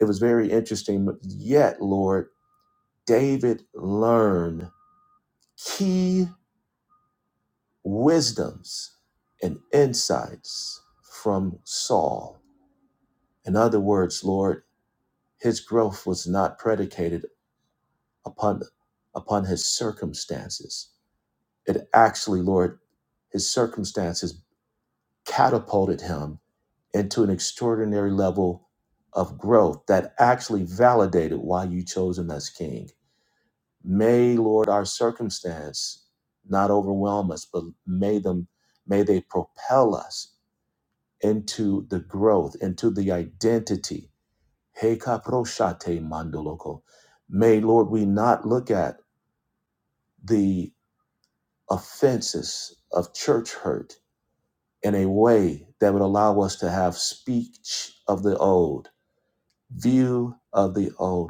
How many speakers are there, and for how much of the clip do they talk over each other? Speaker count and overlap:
1, no overlap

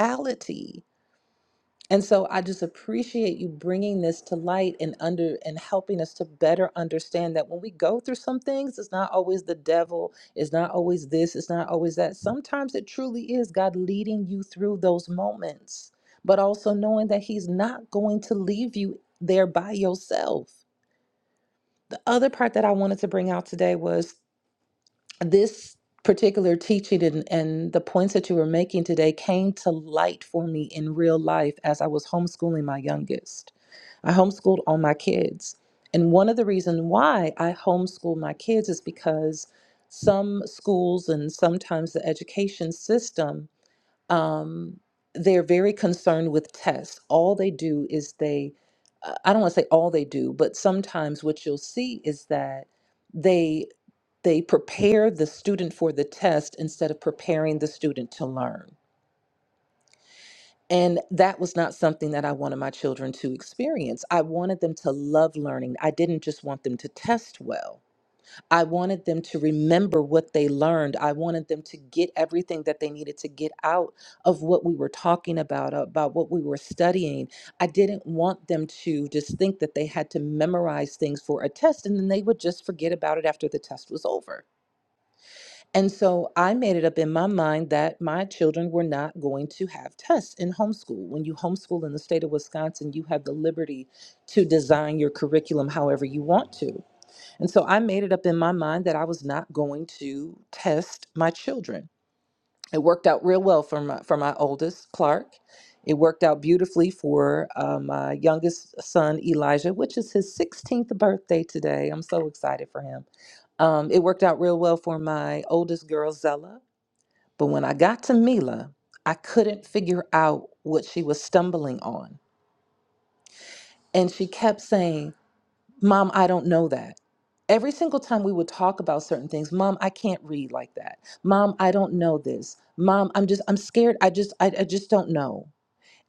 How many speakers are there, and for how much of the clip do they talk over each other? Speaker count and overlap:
1, no overlap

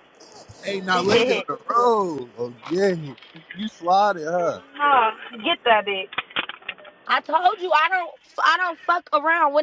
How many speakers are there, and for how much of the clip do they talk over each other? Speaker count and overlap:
3, no overlap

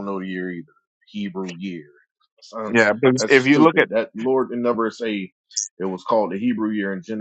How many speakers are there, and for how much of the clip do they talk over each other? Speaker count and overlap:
2, about 11%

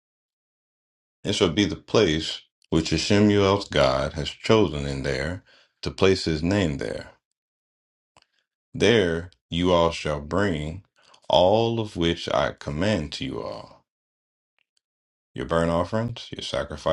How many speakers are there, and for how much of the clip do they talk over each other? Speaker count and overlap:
1, no overlap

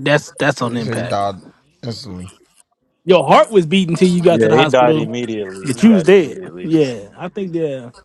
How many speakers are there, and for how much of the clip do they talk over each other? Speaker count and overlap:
3, about 31%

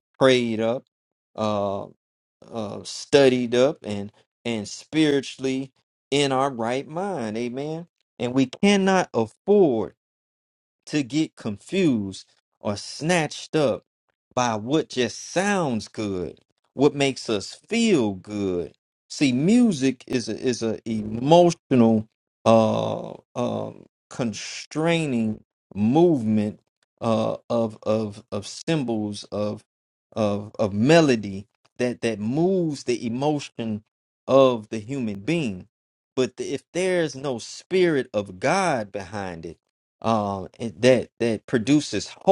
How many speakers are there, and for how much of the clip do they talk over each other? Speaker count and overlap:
1, no overlap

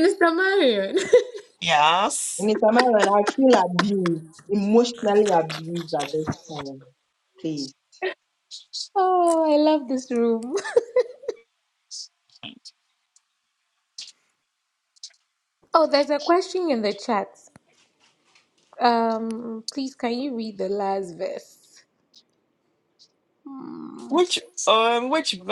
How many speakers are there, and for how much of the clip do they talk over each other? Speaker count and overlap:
3, under 1%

